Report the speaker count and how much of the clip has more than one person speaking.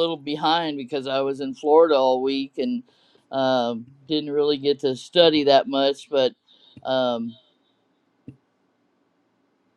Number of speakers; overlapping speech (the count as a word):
one, no overlap